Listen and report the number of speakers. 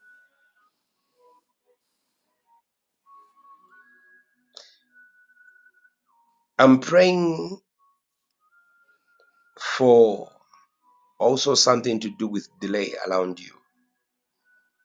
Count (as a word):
one